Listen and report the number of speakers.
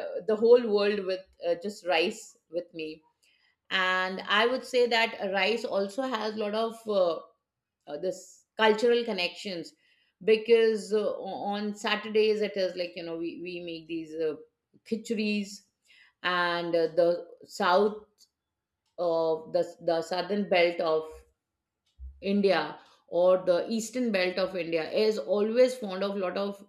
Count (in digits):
1